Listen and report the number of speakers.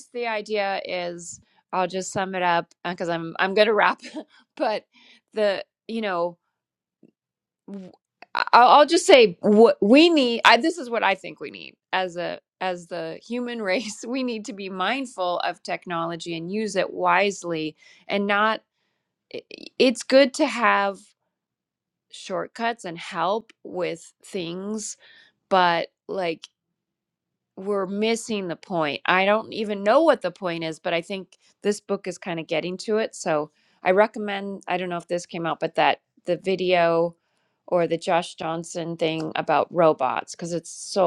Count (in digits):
1